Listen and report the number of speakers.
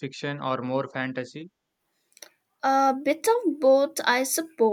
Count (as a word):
two